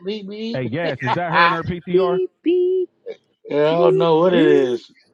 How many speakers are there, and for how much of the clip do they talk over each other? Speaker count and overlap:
three, about 35%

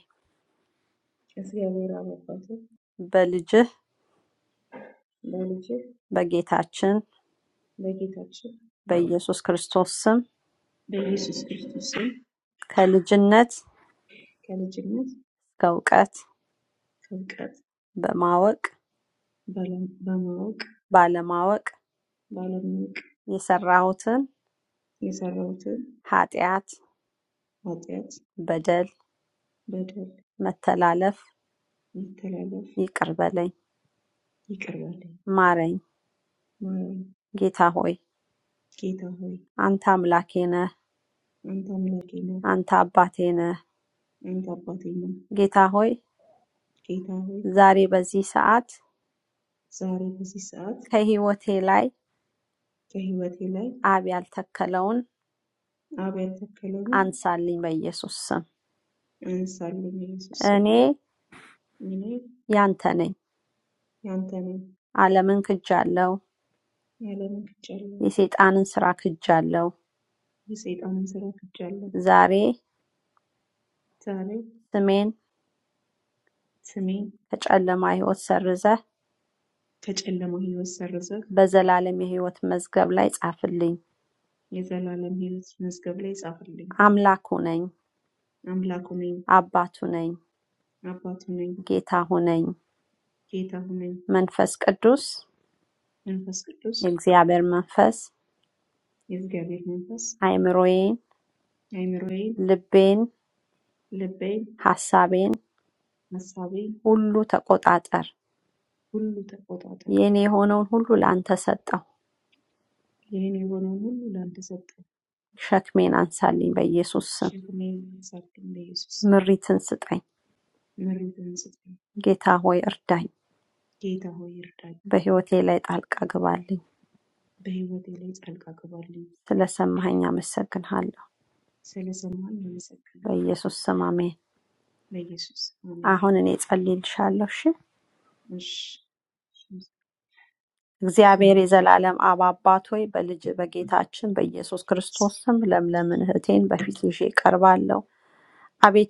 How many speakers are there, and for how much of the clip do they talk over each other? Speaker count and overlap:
two, under 1%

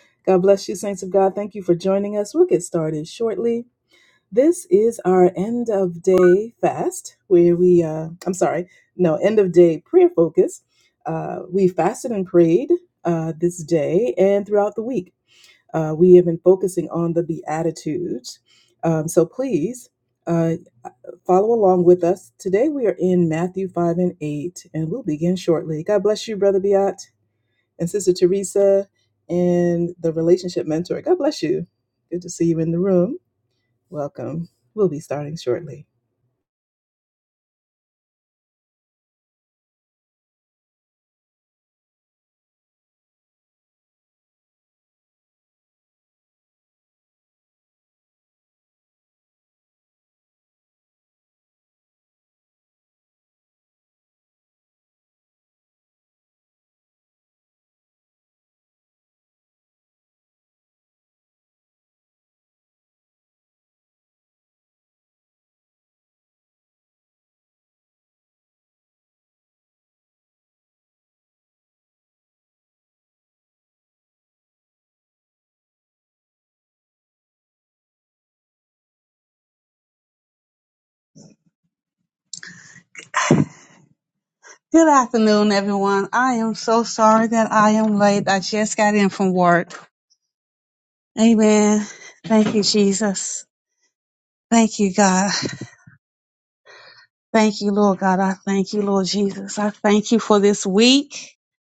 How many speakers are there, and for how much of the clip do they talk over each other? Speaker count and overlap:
two, no overlap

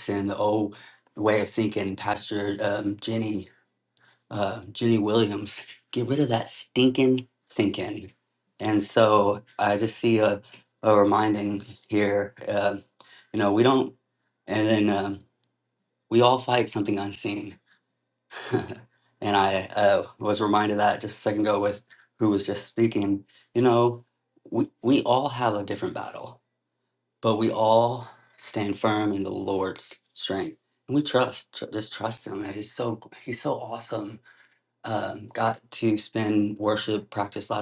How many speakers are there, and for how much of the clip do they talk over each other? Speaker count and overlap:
one, no overlap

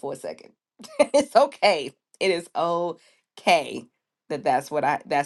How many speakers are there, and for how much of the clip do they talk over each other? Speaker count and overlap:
one, no overlap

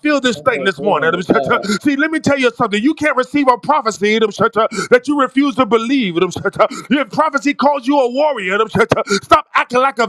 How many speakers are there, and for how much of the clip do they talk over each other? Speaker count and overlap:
two, about 8%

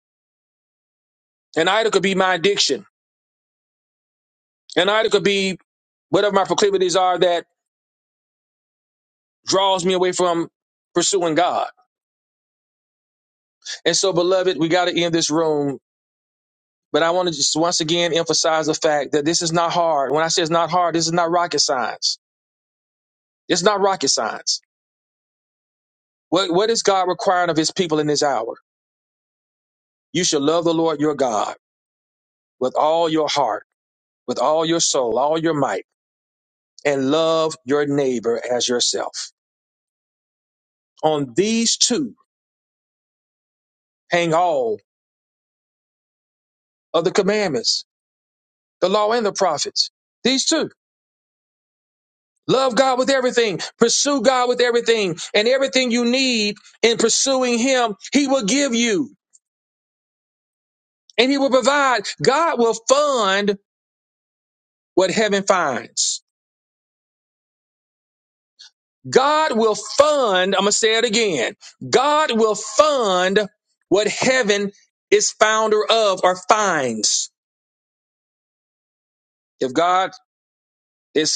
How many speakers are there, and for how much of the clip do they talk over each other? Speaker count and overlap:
one, no overlap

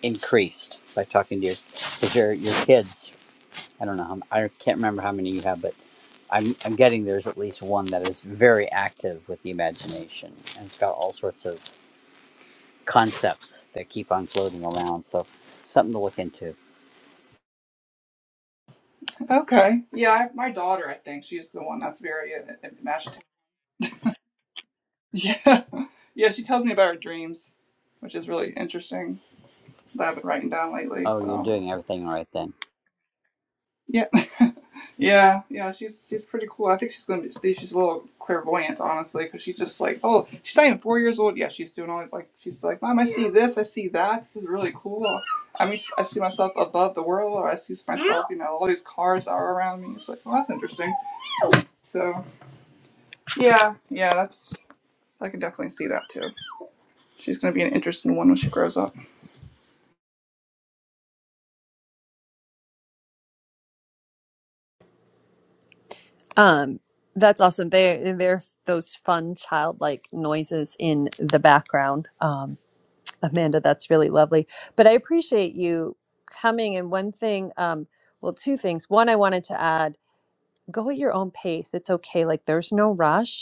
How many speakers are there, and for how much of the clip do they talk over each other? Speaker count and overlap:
three, about 1%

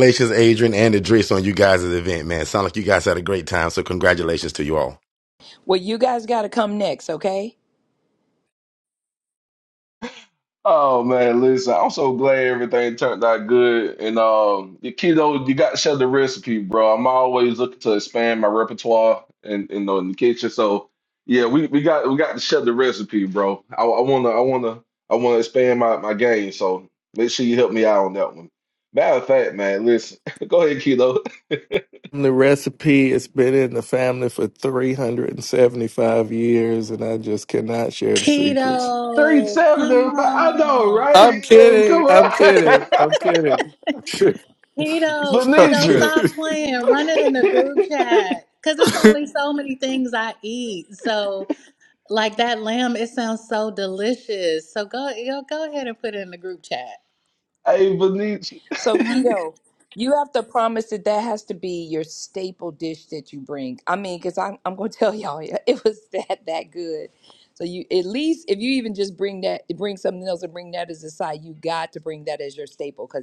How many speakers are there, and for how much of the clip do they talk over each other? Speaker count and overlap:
five, about 7%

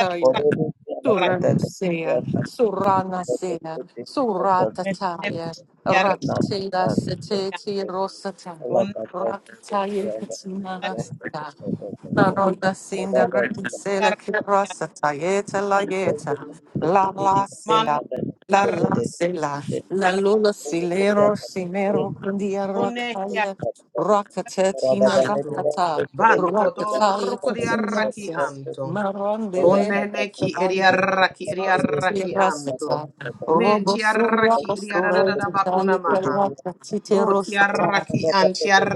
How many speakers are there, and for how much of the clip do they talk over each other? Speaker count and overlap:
three, about 54%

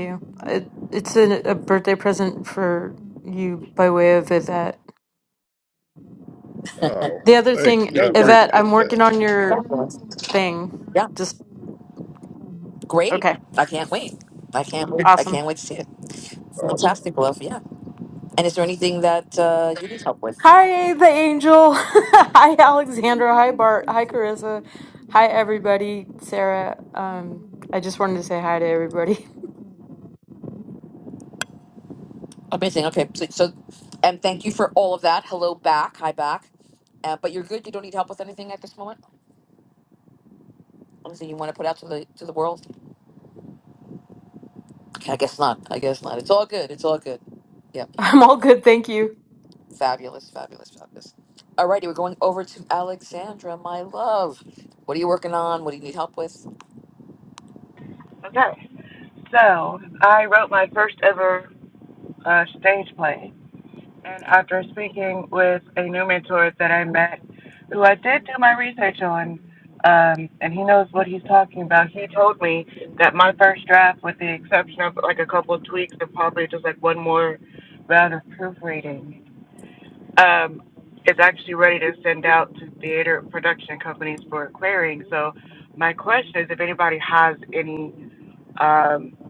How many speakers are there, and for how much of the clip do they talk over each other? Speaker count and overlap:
four, about 3%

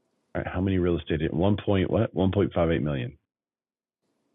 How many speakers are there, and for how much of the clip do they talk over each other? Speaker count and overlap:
one, no overlap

